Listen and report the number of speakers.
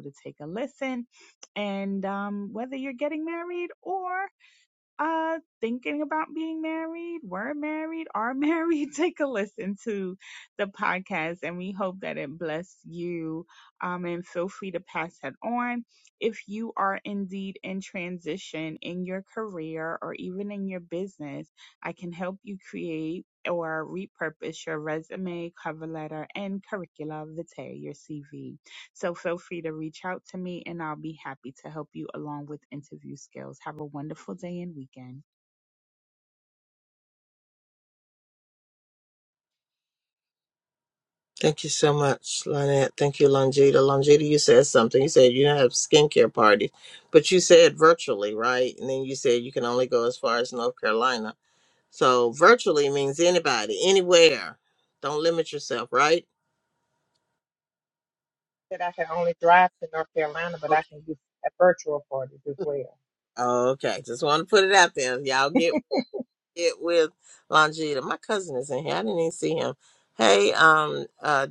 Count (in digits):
3